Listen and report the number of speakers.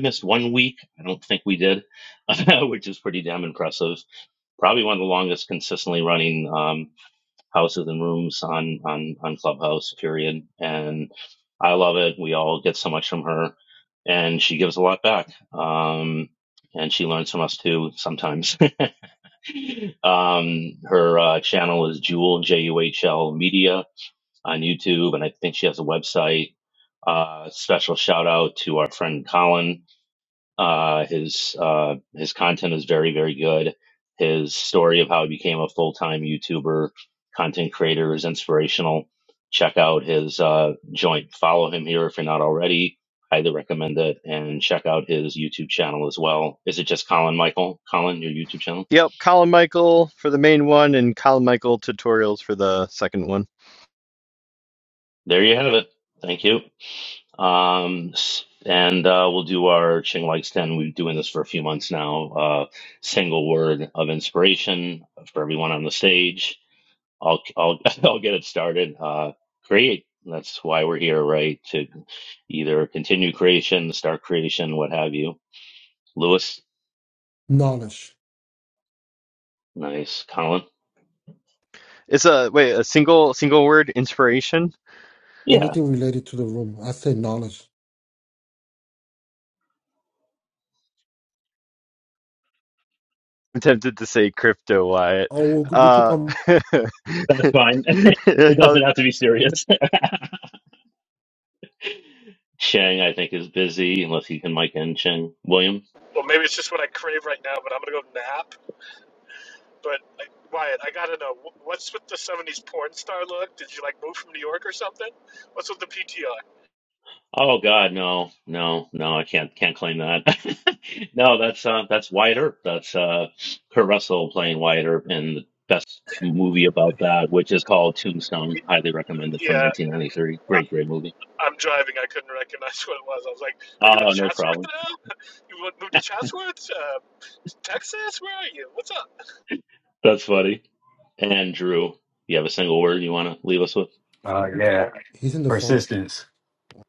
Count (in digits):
5